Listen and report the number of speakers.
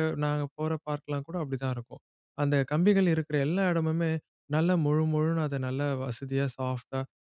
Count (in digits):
1